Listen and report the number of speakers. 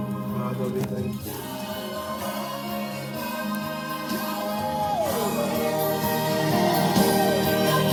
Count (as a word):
zero